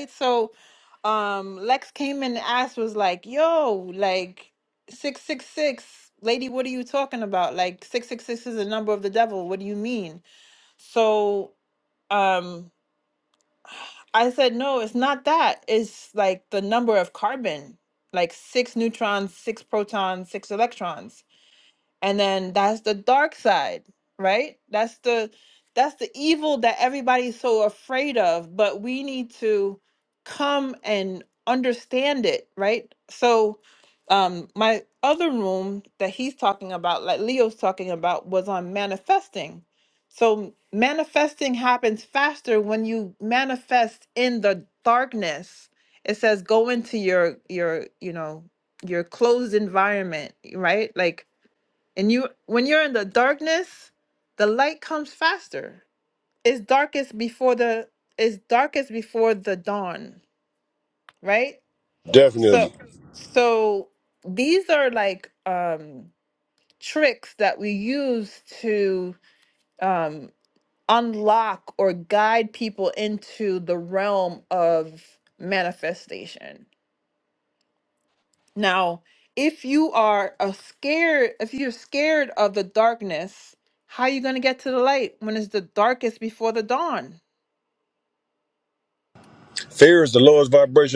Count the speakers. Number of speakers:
2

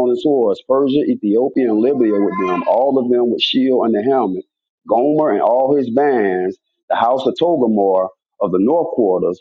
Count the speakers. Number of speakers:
1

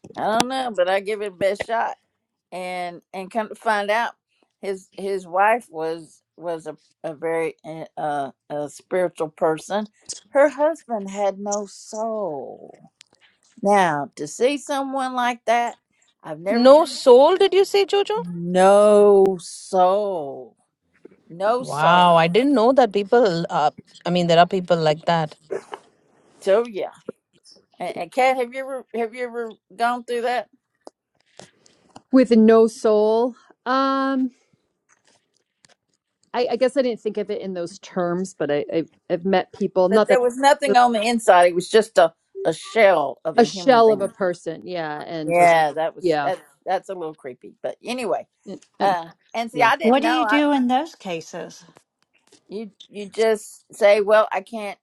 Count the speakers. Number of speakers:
4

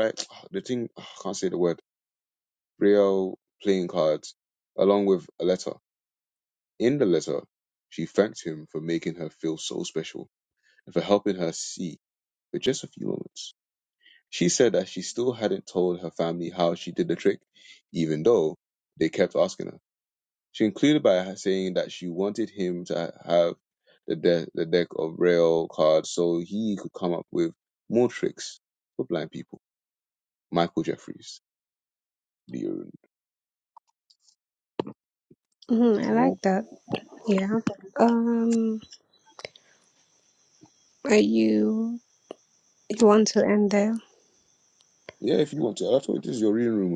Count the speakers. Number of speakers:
2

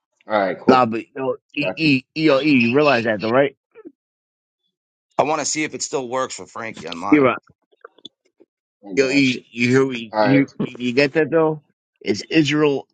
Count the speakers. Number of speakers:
3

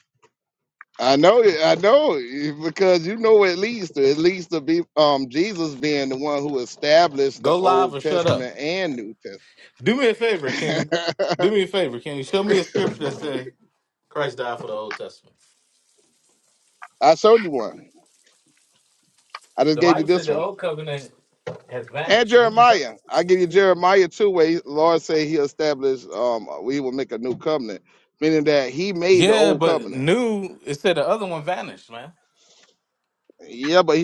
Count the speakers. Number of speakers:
2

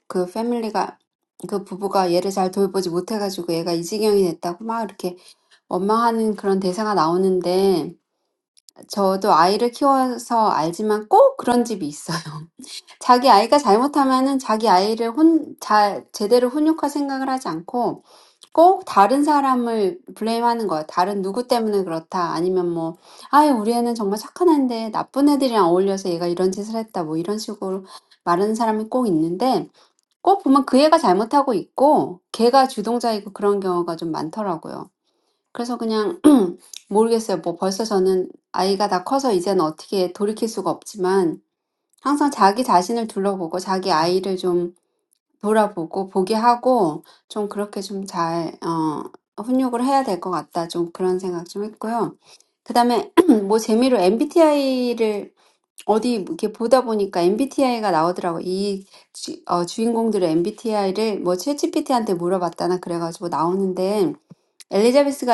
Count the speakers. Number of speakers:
1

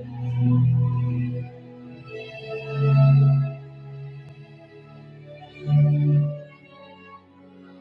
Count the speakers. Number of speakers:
0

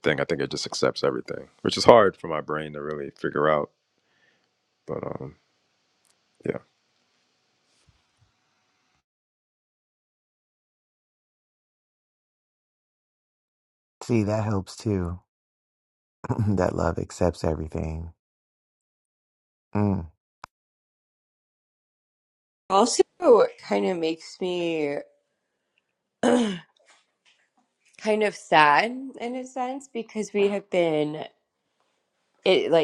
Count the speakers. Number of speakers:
3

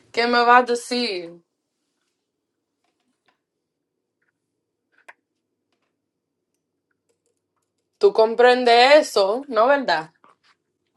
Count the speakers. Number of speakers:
1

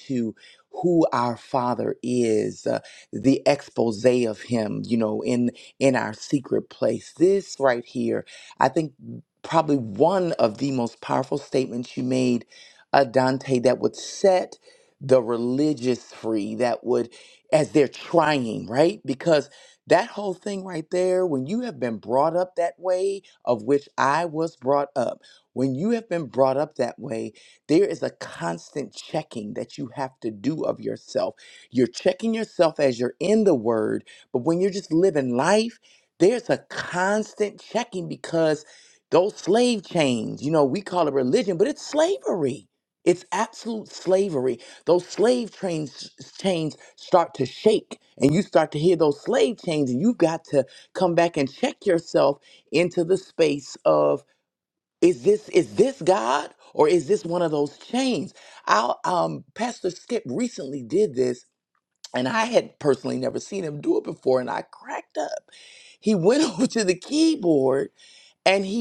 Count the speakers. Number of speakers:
1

